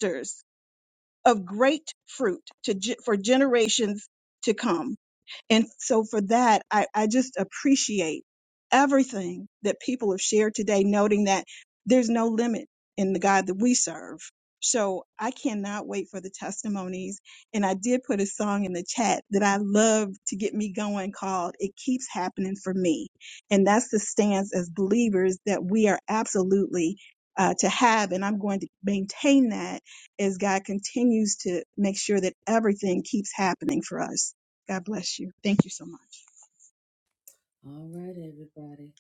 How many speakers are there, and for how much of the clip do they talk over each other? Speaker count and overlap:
2, no overlap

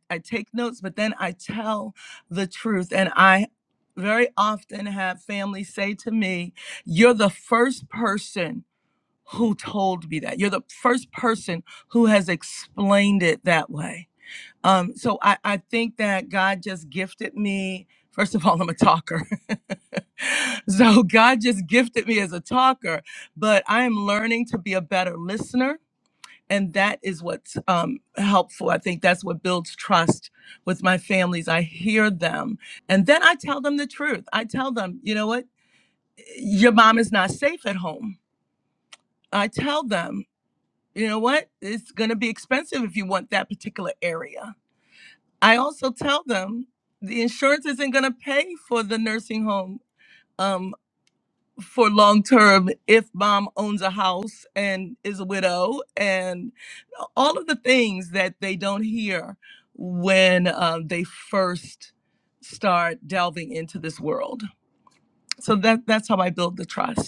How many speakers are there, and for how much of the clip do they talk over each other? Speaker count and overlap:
1, no overlap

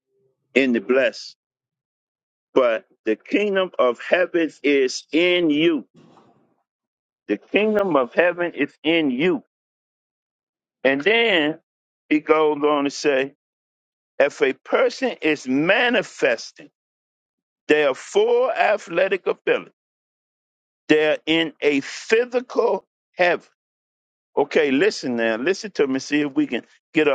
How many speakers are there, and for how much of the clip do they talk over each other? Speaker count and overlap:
1, no overlap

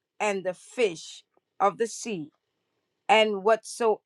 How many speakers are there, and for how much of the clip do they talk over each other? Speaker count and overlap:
1, no overlap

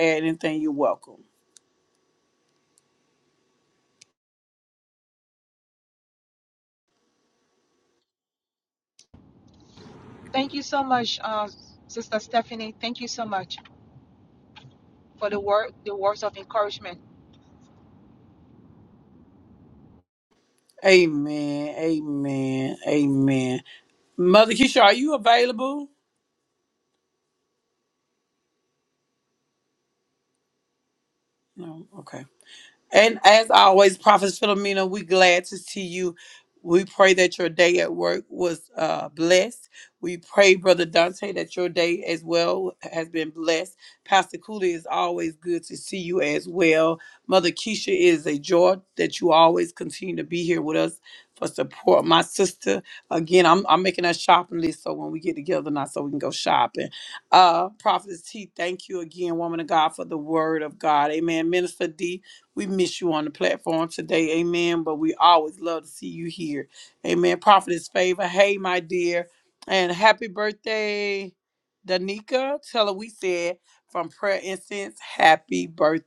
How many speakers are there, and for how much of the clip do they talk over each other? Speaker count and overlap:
2, no overlap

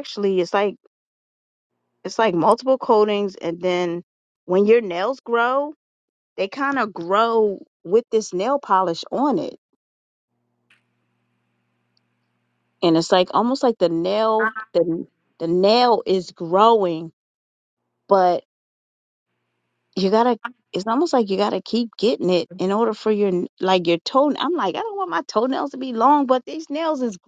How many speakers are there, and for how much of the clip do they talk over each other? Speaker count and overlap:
1, no overlap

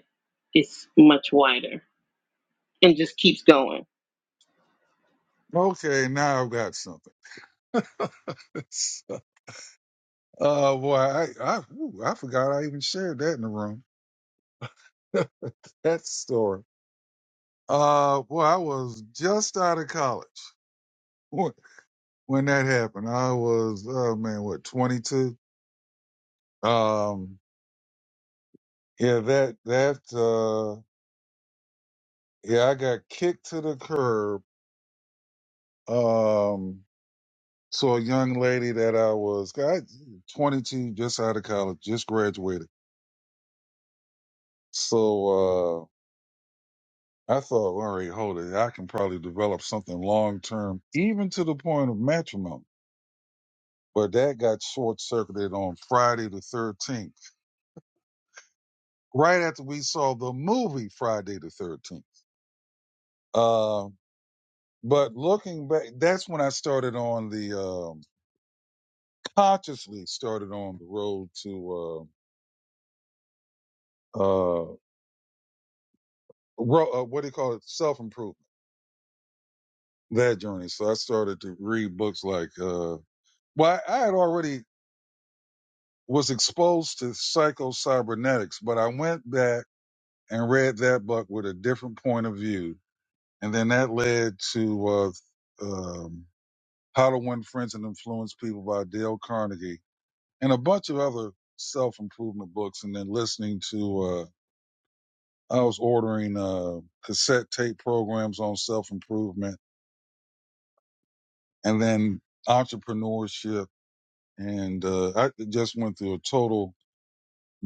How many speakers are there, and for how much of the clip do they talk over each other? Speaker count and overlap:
2, no overlap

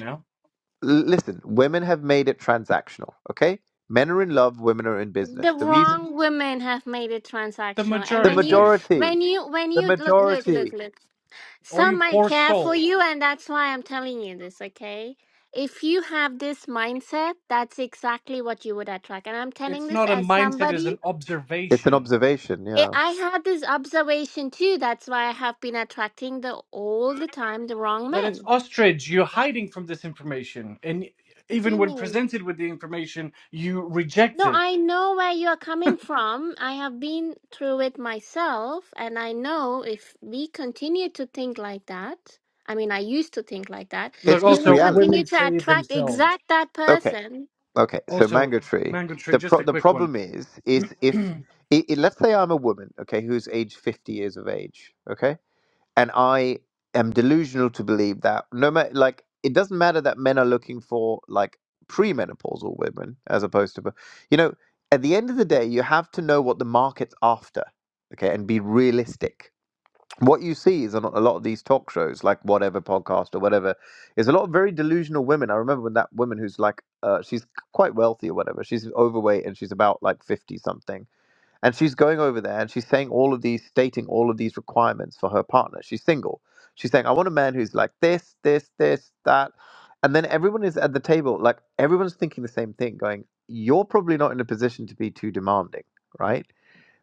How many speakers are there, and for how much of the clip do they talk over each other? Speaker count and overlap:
3, about 11%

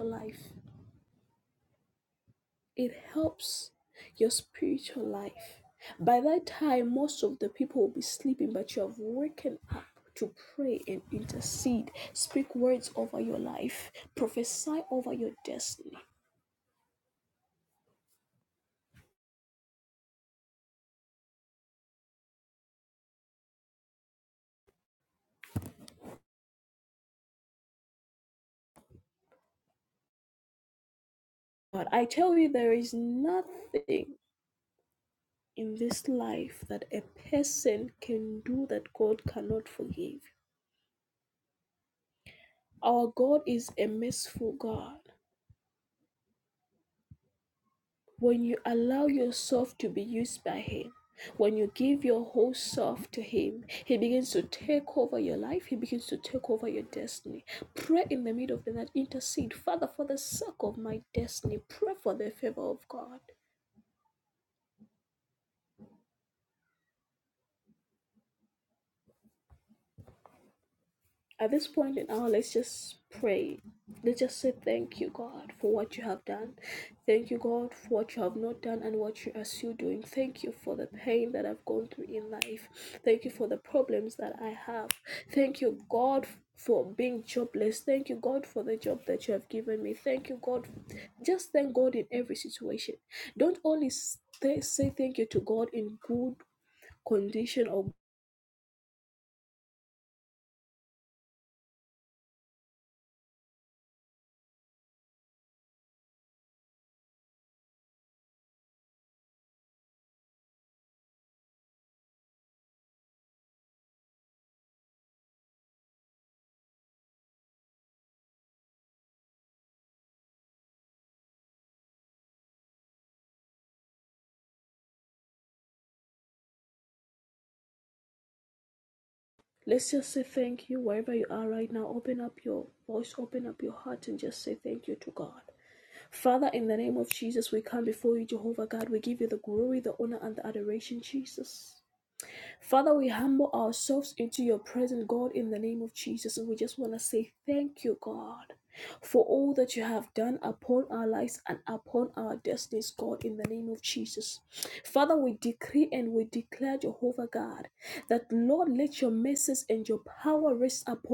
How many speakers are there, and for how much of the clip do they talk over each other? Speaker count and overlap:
1, no overlap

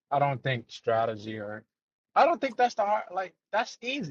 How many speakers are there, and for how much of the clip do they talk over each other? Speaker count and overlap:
1, no overlap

